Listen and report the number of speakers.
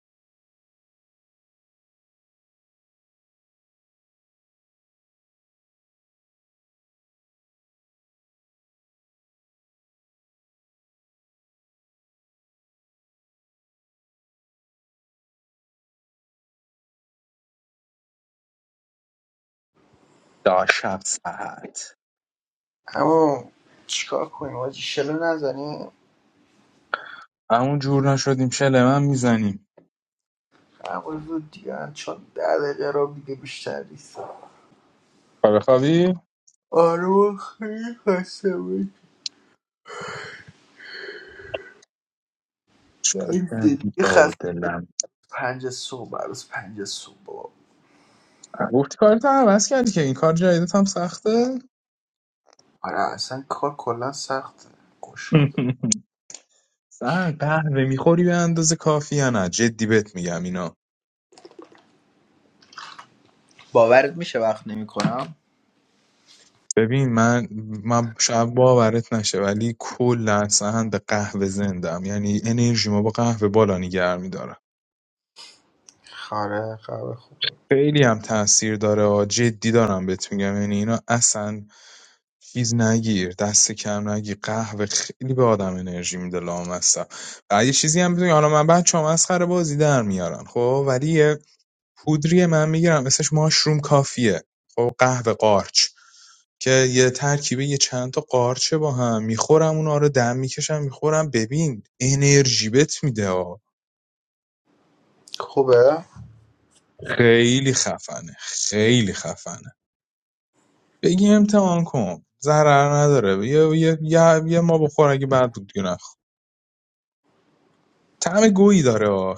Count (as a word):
two